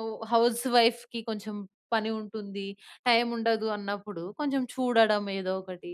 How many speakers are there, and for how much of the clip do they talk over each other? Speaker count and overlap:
1, no overlap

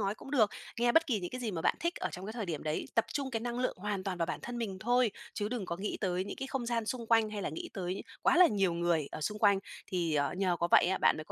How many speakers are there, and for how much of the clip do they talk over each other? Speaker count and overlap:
1, no overlap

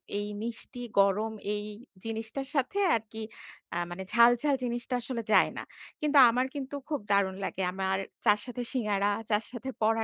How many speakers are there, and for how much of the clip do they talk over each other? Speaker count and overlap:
1, no overlap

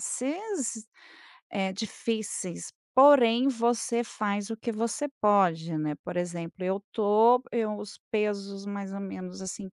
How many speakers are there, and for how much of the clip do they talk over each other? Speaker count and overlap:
1, no overlap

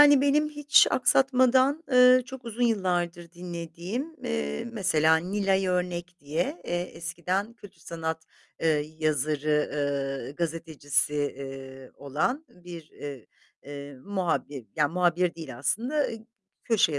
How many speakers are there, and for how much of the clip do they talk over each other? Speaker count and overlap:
1, no overlap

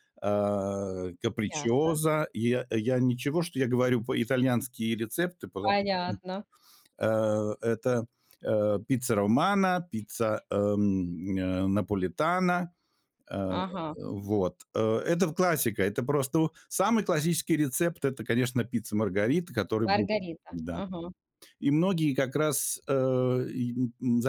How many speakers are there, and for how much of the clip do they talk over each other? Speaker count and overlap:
2, about 5%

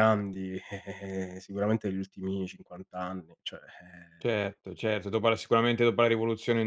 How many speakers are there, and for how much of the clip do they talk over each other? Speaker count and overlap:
2, no overlap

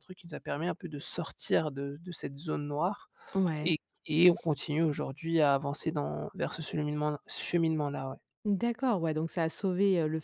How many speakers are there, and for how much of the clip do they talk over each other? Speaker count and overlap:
2, about 1%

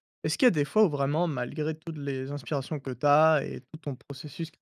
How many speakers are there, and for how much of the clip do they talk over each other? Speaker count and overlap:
1, no overlap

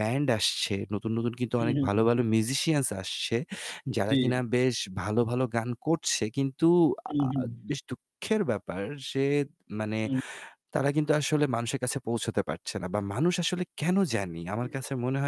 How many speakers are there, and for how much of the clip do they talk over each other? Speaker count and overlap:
2, about 5%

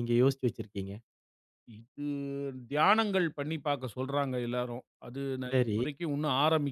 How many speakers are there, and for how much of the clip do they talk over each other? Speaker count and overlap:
2, about 5%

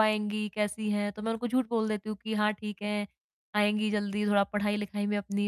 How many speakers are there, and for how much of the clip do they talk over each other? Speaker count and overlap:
1, no overlap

